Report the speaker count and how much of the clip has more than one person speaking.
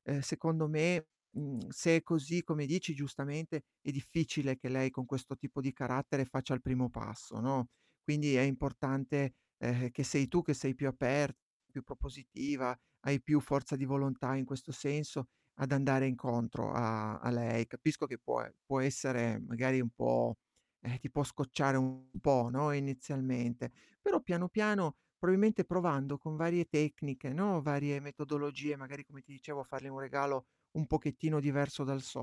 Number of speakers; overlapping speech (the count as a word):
one, no overlap